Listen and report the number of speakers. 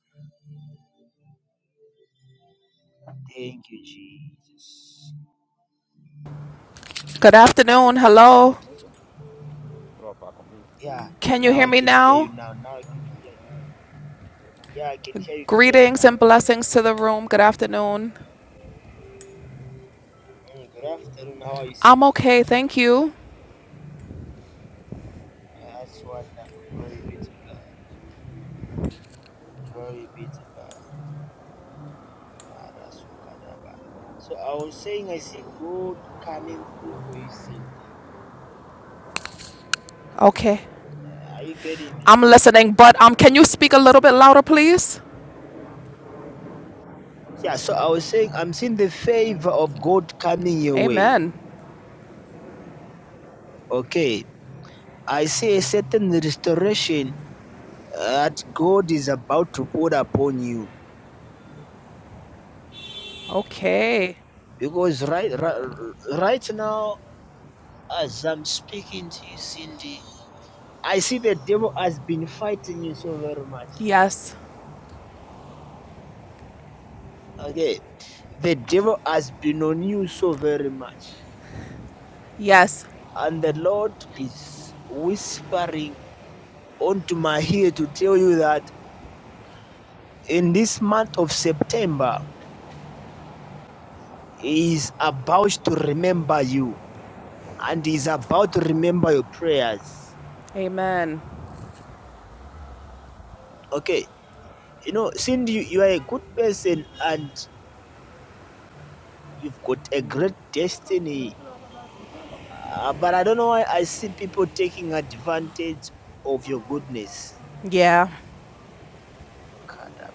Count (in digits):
2